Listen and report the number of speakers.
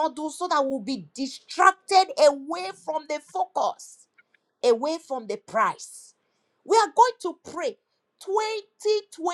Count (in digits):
1